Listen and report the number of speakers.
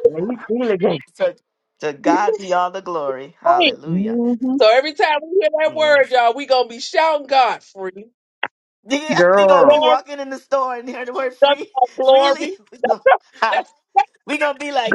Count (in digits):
3